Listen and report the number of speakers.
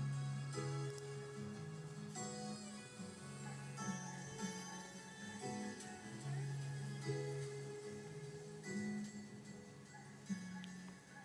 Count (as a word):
zero